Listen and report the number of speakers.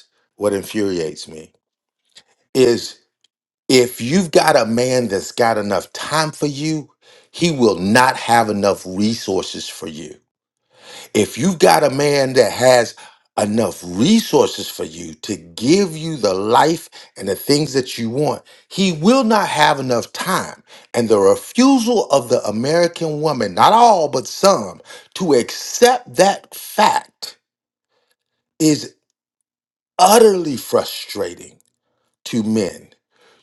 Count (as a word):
one